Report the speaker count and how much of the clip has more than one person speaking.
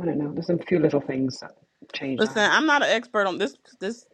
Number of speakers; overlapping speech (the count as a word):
two, about 9%